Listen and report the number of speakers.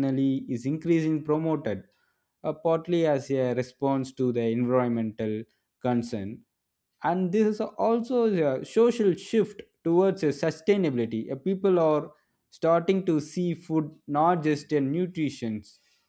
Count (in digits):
1